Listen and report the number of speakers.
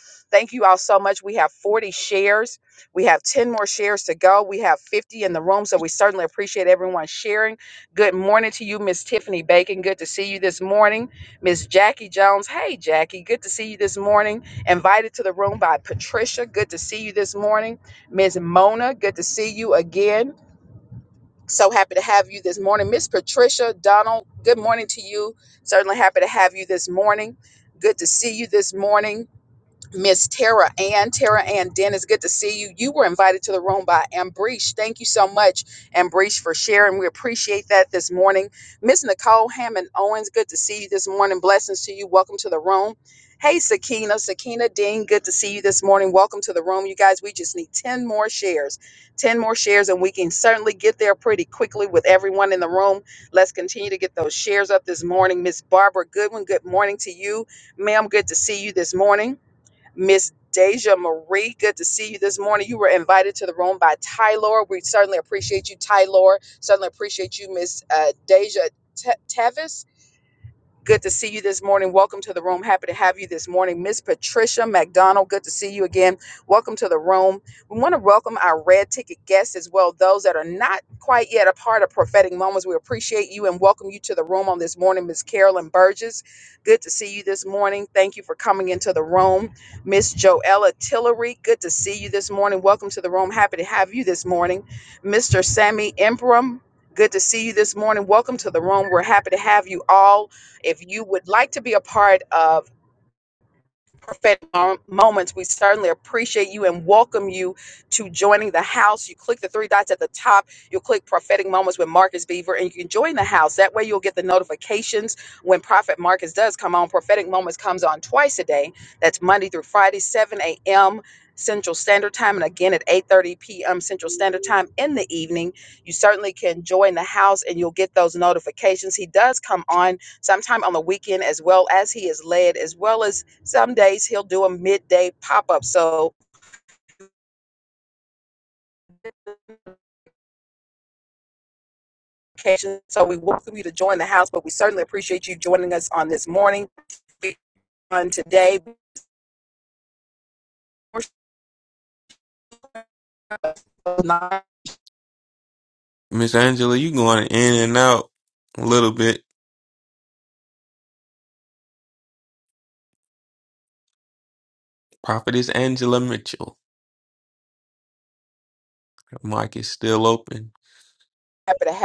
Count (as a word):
two